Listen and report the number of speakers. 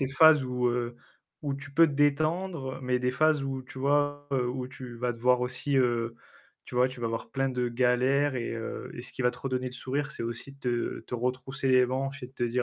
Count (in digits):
1